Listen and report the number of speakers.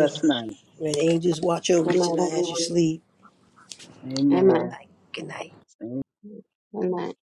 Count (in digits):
3